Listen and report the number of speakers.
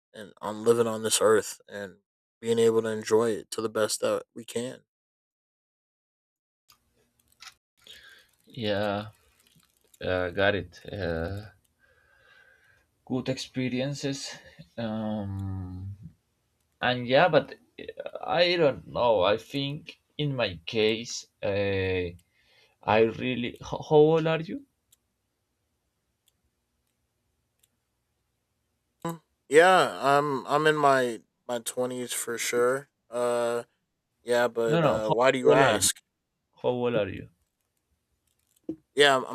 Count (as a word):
two